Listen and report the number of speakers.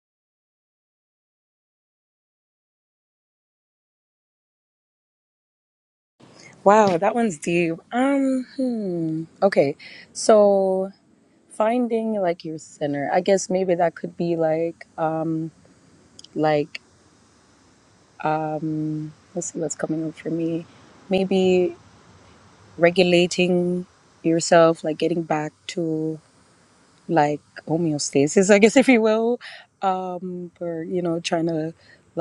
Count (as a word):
one